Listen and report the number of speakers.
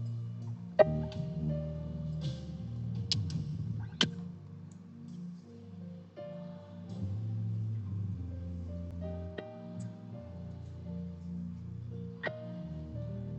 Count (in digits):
0